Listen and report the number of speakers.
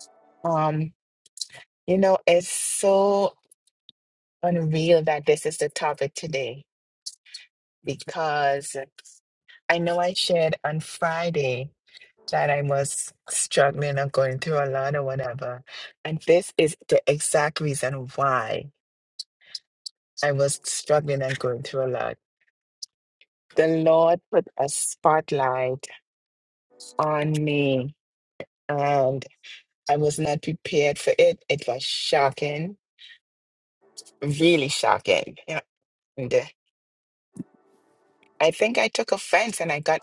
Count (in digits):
1